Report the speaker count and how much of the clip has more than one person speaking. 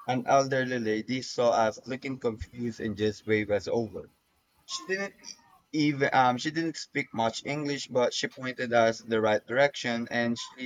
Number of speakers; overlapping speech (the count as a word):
one, no overlap